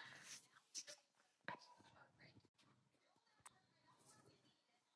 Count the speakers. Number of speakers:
0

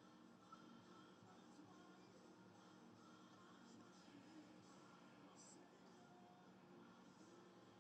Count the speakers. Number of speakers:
0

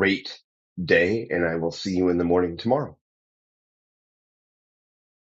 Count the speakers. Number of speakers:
1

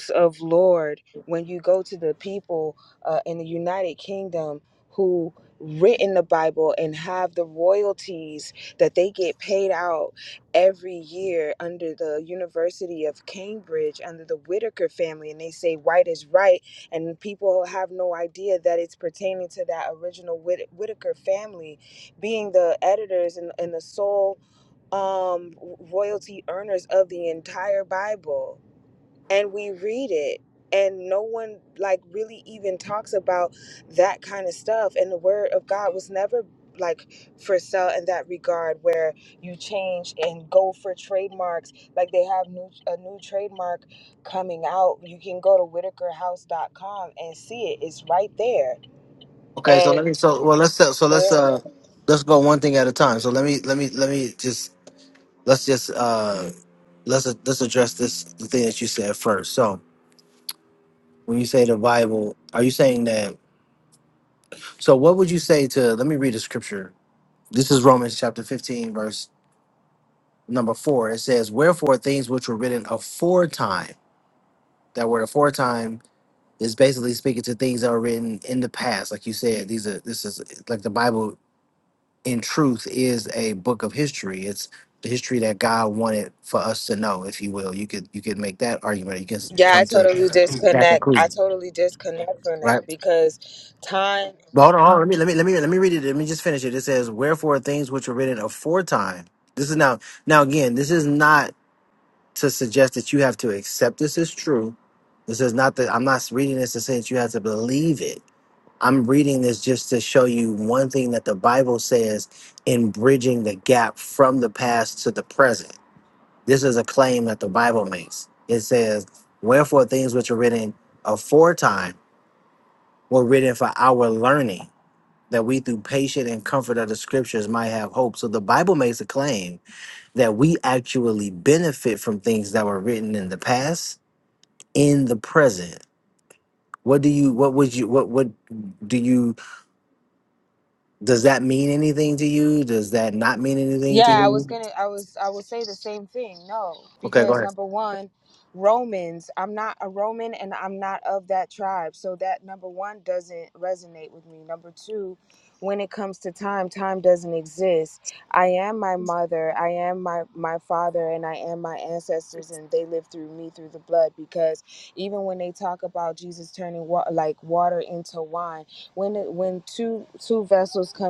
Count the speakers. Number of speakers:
2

